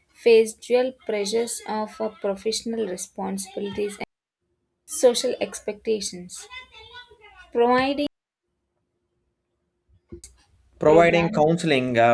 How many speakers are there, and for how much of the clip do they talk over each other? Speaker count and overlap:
two, about 5%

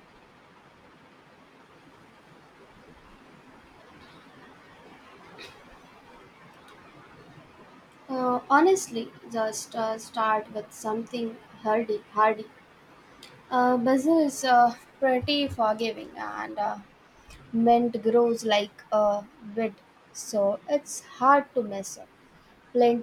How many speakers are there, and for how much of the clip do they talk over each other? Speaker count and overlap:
one, no overlap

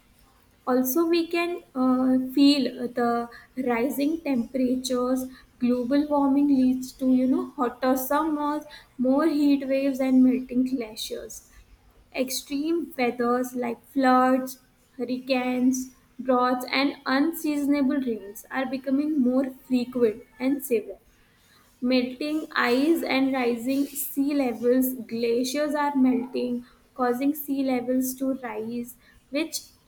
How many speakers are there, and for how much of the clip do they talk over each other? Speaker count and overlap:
one, no overlap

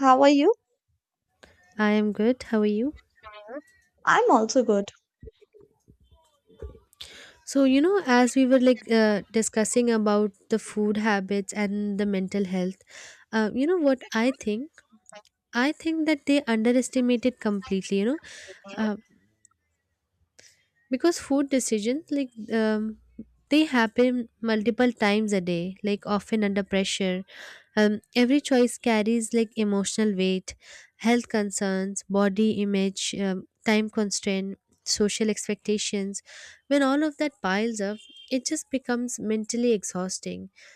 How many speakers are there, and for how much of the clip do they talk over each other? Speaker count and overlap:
two, no overlap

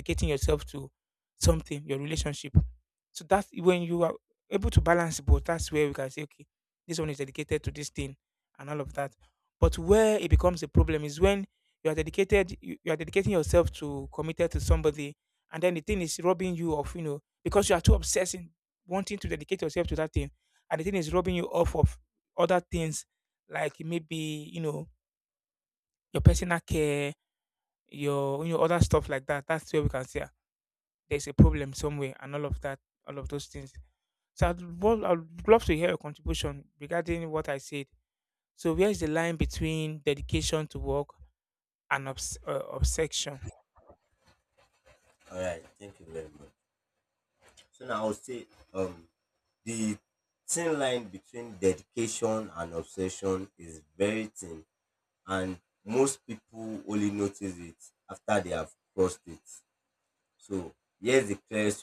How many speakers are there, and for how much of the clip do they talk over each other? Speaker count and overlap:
two, no overlap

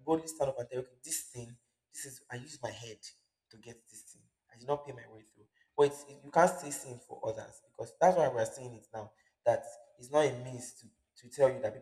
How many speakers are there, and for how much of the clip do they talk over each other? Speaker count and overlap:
one, no overlap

